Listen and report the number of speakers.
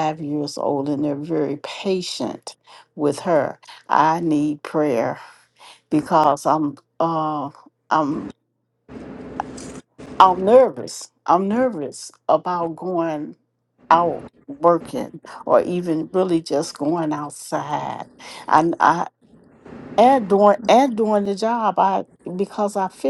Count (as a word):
one